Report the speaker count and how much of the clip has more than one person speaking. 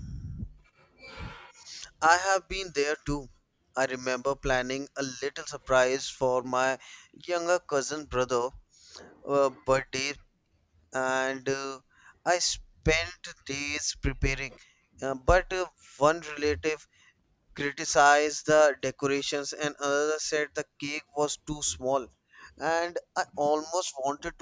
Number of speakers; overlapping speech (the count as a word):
one, no overlap